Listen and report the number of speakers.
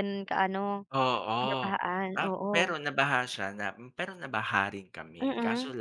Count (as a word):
two